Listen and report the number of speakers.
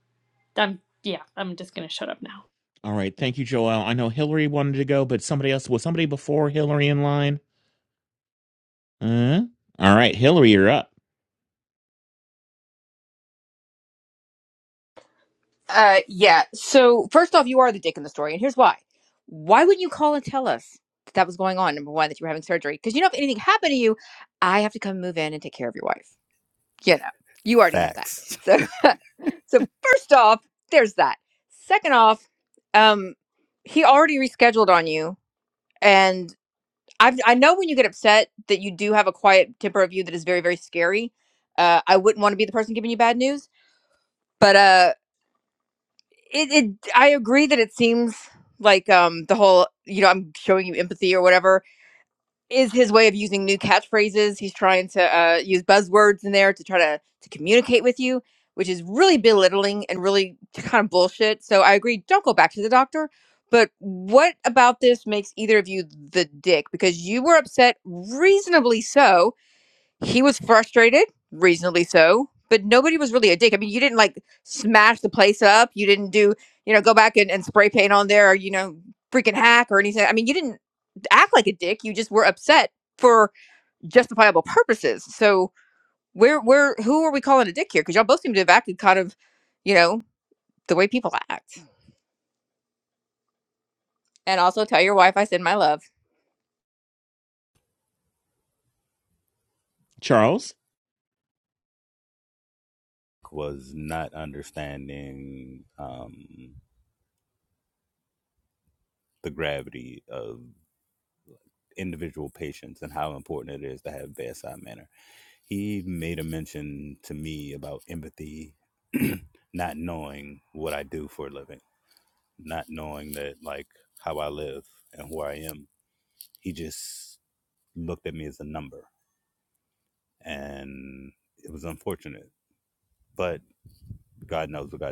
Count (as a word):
four